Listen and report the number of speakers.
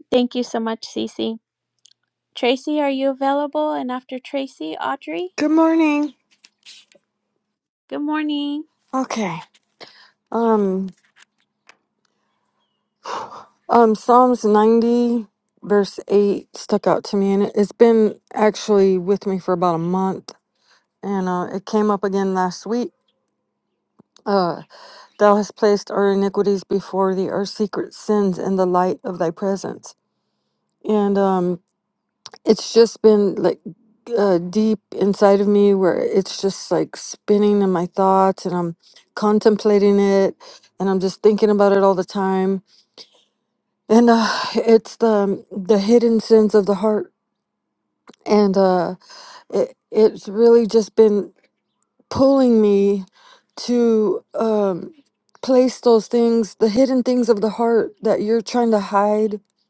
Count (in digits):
2